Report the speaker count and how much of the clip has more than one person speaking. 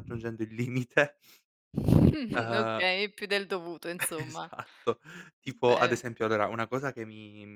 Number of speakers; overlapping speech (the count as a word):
two, about 18%